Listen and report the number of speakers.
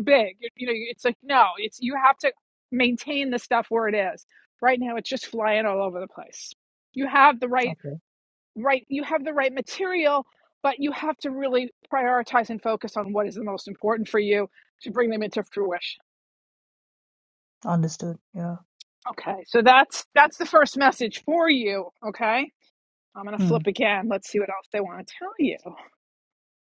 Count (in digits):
2